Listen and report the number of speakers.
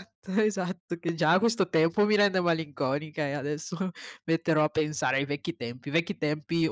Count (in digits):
1